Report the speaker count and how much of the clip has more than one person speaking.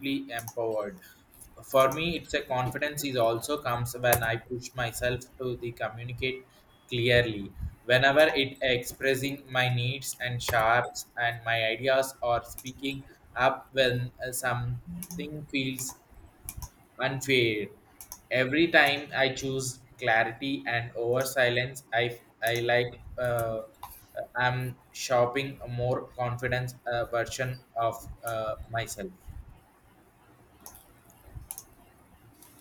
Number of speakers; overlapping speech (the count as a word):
one, no overlap